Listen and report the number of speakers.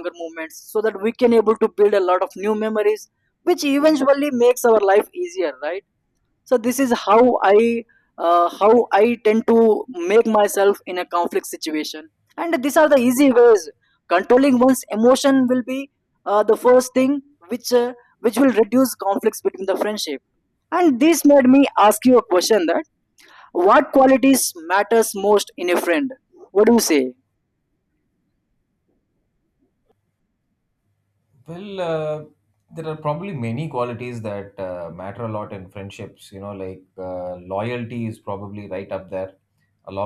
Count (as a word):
two